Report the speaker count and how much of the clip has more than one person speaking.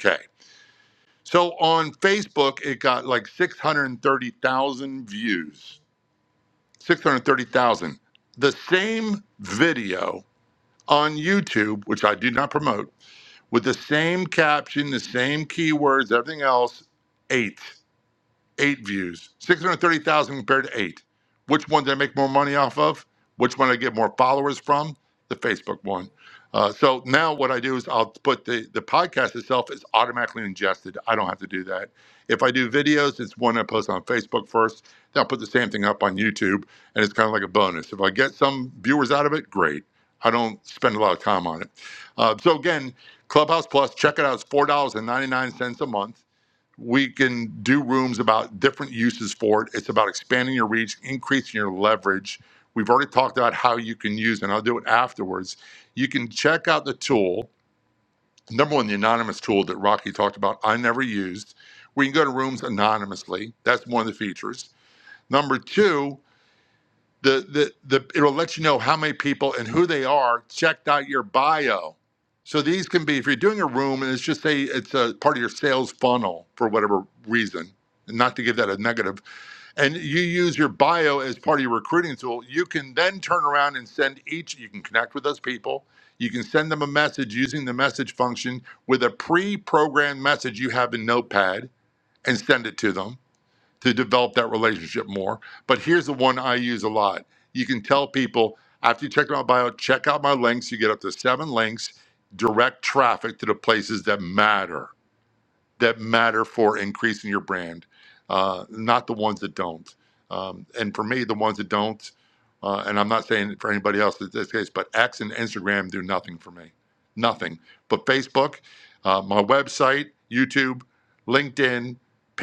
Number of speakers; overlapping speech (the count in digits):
1, no overlap